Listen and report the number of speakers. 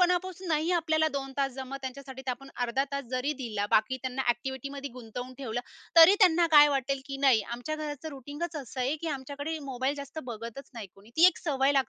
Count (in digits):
1